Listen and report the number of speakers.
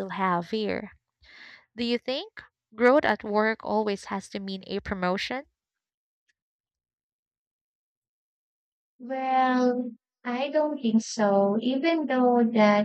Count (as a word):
two